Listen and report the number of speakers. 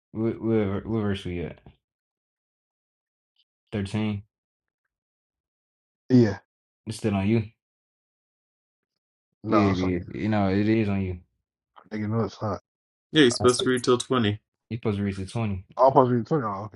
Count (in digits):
3